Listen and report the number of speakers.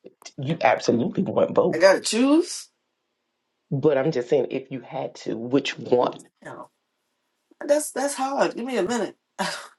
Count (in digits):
2